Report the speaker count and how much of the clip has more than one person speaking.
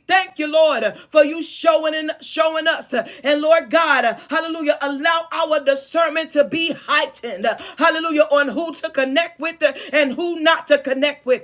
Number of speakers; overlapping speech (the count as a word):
one, no overlap